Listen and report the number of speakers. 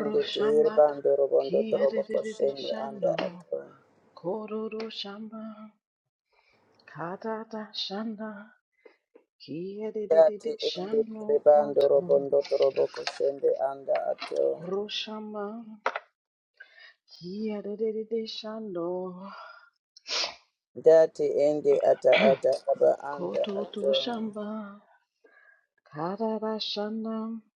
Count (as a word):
two